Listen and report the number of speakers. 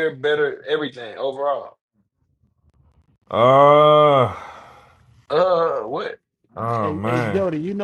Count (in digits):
3